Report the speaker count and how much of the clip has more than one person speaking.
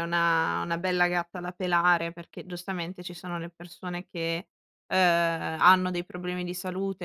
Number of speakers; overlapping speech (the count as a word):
one, no overlap